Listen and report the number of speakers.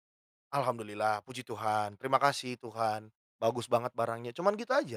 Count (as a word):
one